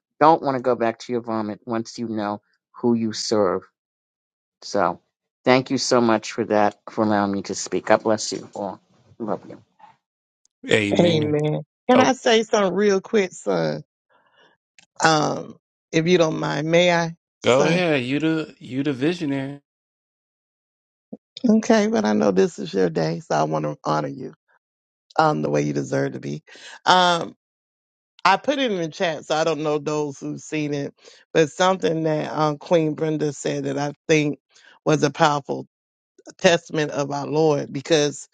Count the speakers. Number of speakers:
3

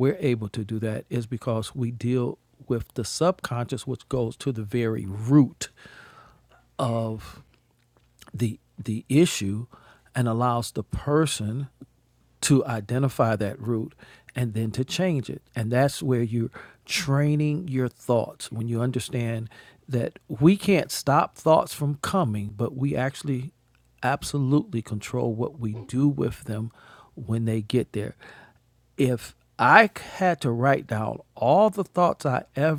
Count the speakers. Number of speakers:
1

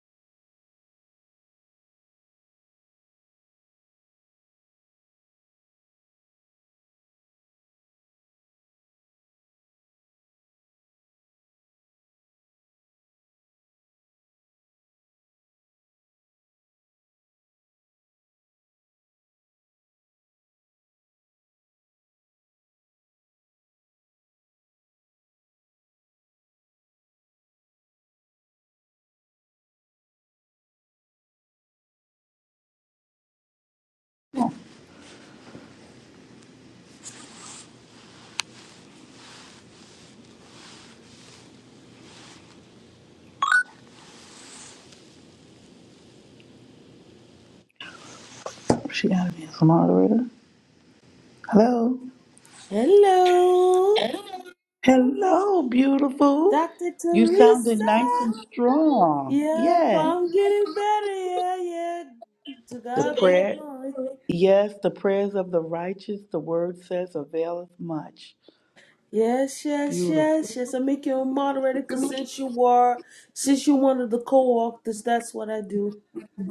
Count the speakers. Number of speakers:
2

